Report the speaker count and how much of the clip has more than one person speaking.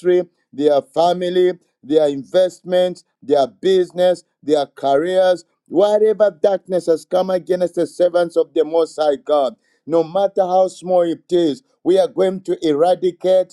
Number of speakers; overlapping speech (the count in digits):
1, no overlap